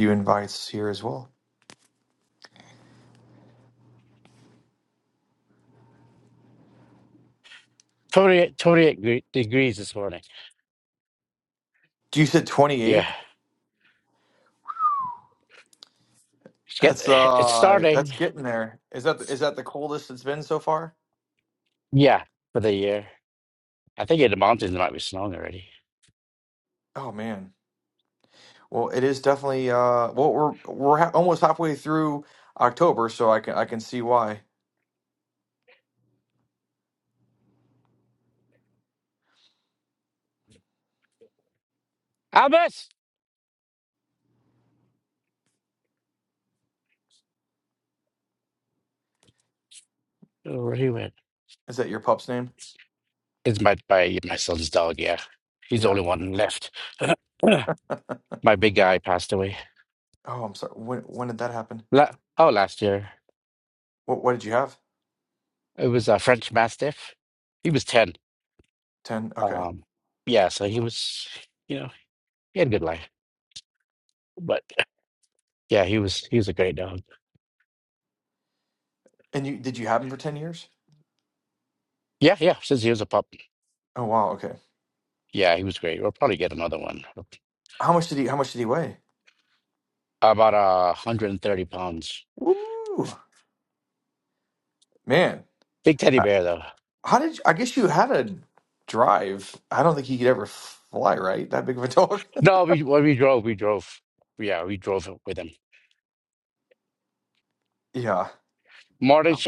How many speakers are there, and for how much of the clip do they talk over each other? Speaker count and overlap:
two, about 2%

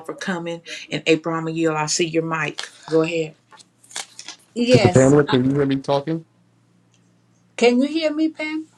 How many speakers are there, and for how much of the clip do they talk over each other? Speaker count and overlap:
three, about 8%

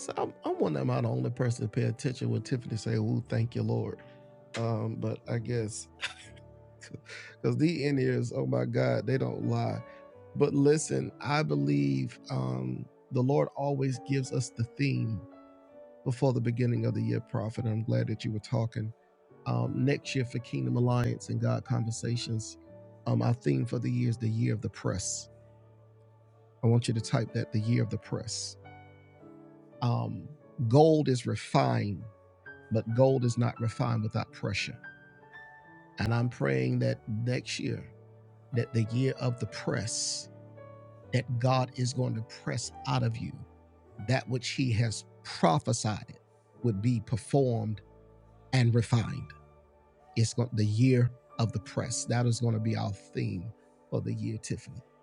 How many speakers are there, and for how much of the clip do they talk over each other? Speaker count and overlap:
one, no overlap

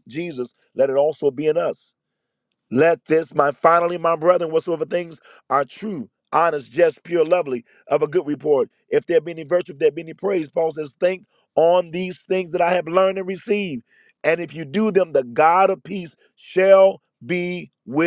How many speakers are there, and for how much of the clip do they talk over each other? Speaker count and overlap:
one, no overlap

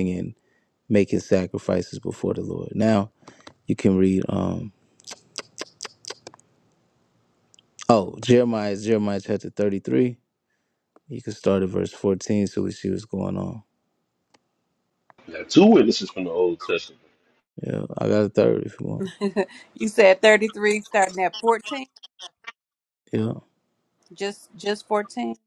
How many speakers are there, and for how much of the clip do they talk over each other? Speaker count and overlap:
three, no overlap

